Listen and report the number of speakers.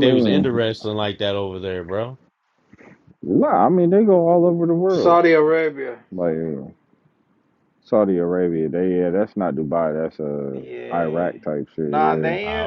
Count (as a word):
three